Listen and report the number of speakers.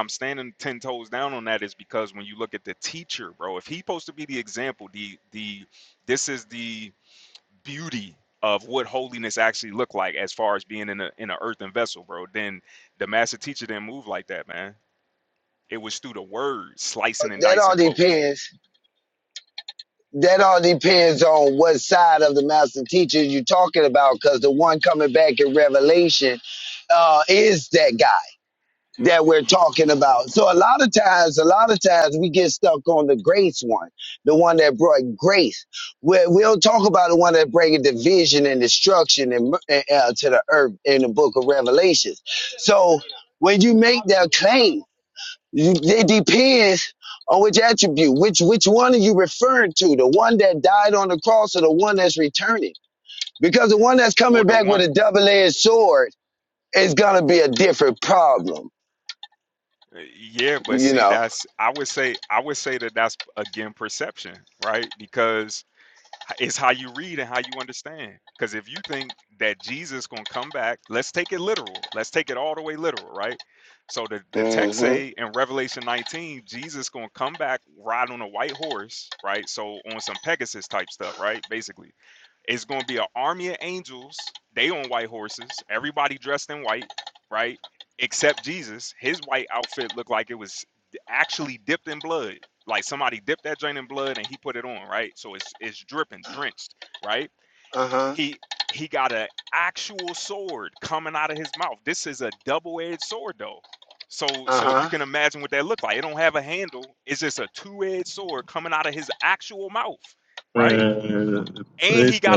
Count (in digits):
3